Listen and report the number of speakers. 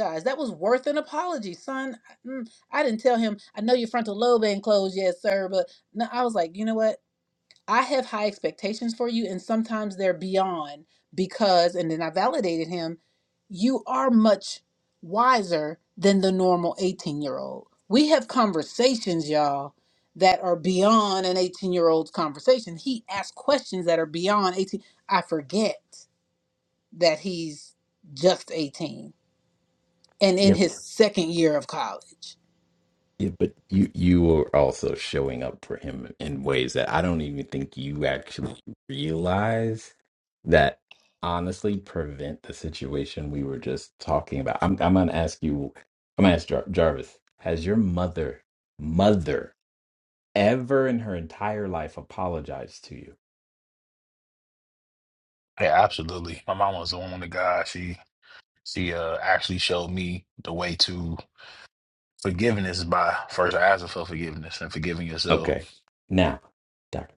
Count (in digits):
3